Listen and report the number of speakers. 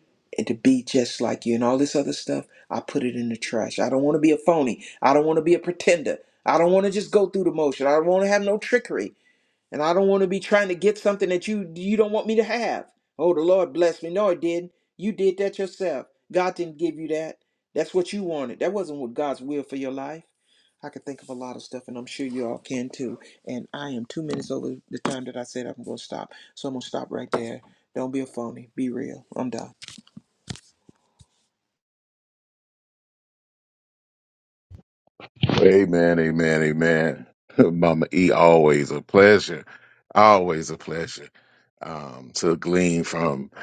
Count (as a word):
two